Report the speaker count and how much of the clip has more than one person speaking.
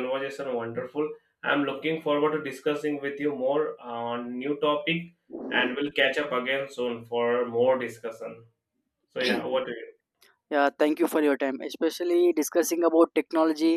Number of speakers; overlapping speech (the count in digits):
2, no overlap